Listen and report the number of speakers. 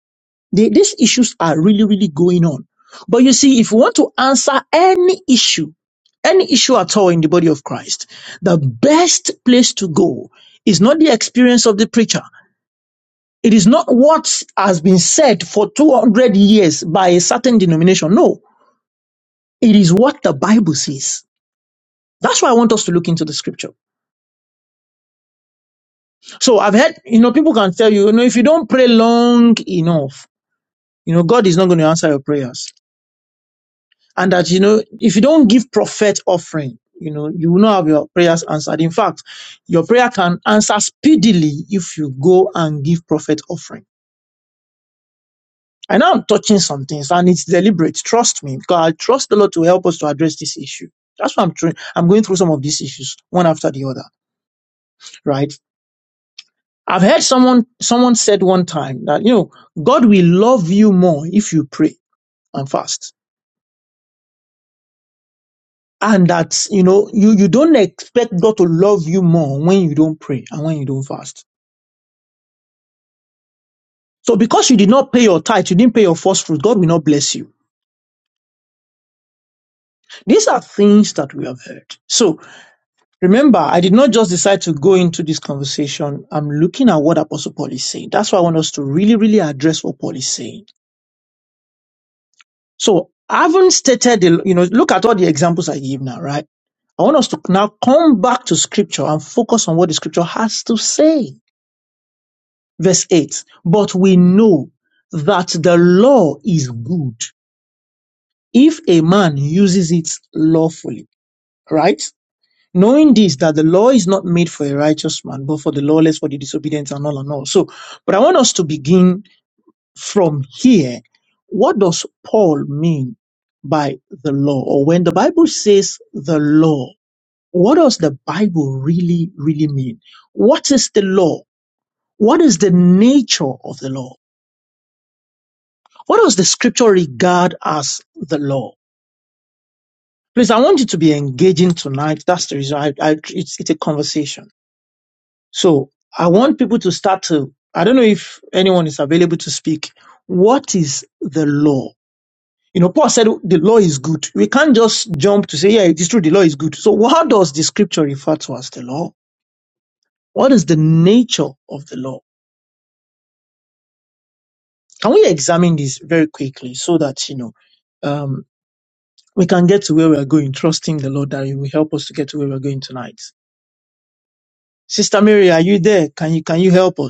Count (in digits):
1